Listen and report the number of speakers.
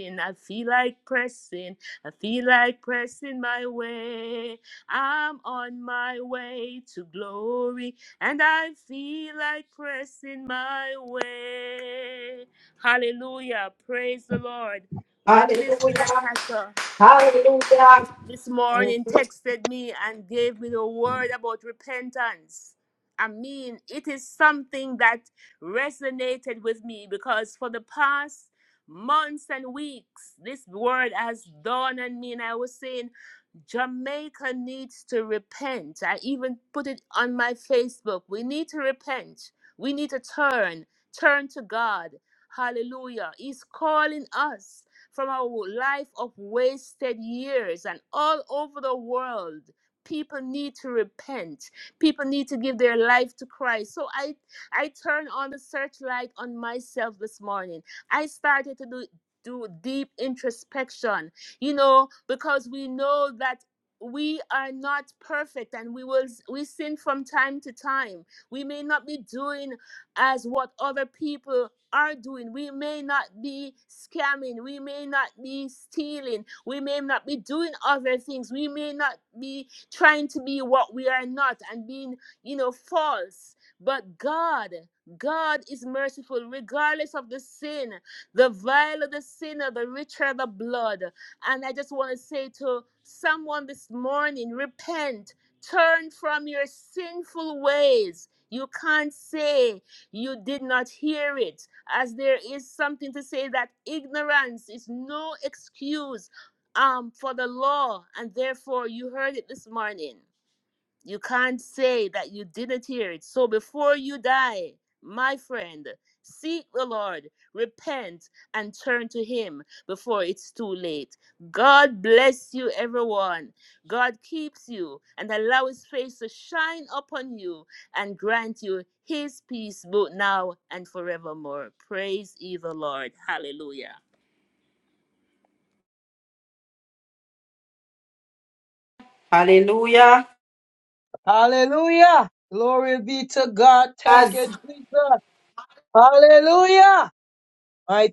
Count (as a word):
three